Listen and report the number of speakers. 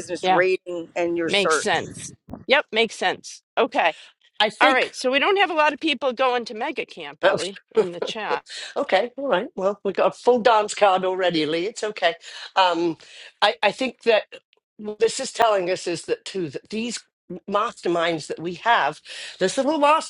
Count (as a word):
three